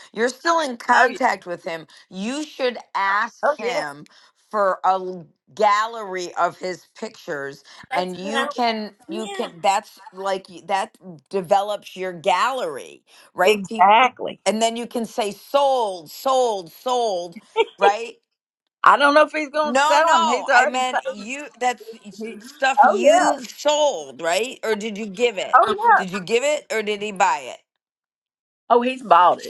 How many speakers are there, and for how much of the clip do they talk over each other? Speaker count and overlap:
2, about 16%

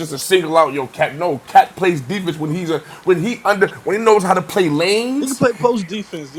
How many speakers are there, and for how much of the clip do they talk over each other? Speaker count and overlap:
2, about 1%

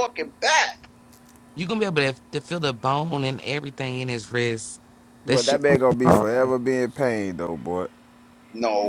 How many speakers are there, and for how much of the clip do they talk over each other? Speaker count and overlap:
3, about 11%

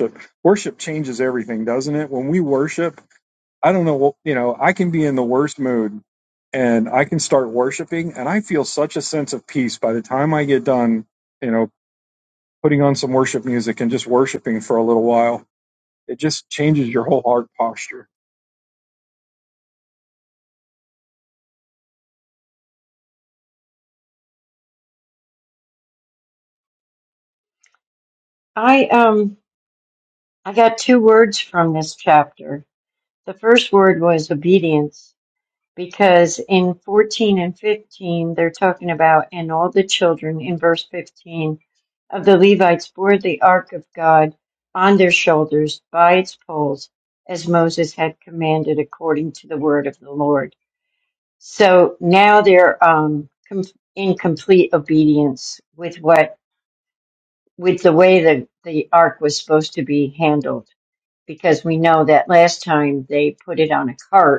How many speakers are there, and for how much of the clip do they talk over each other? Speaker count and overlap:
2, no overlap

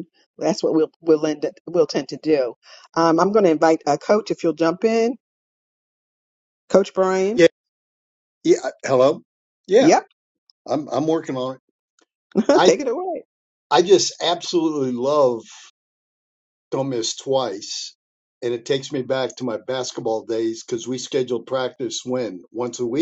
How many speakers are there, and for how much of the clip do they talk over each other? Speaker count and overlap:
2, about 2%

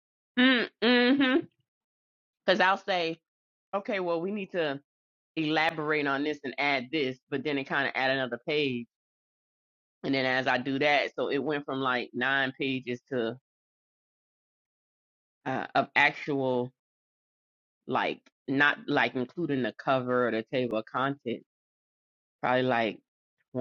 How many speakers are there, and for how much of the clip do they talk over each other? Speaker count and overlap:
1, no overlap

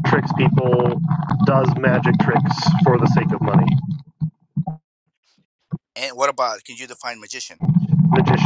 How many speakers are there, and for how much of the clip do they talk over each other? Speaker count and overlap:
2, no overlap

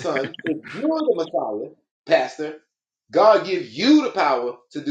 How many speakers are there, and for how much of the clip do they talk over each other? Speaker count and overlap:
1, no overlap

